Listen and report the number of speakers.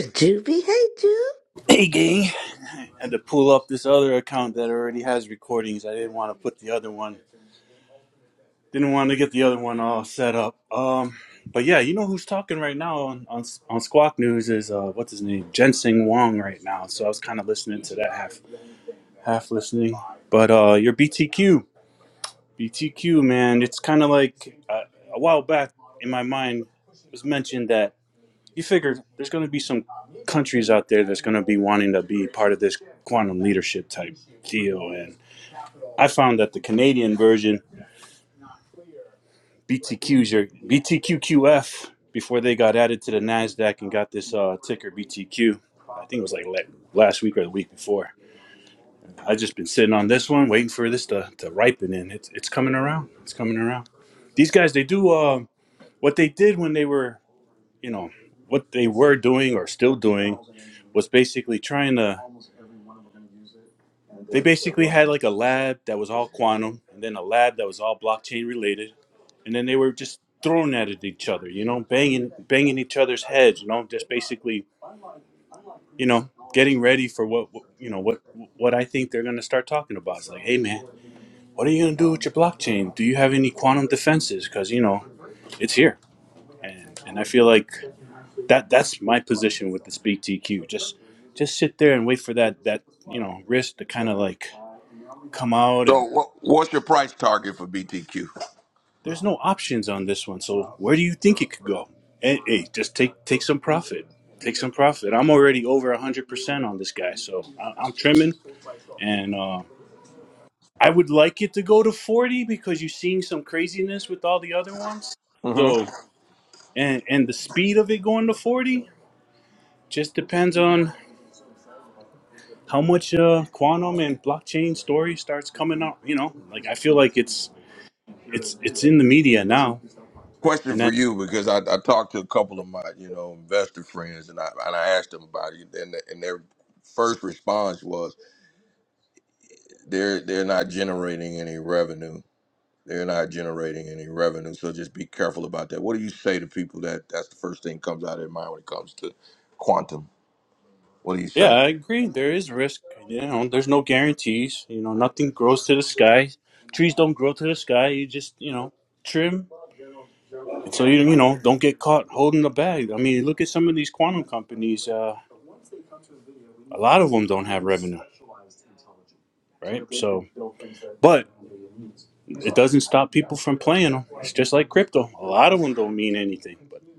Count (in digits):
3